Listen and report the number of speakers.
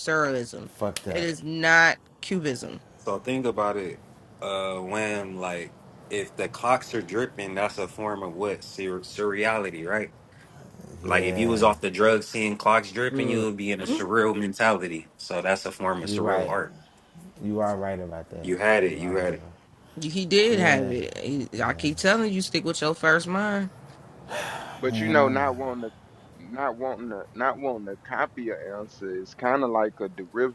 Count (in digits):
4